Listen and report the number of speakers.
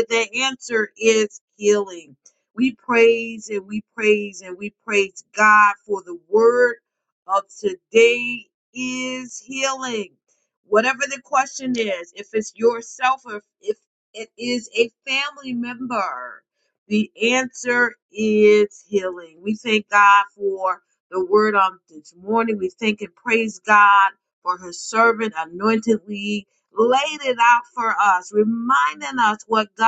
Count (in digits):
1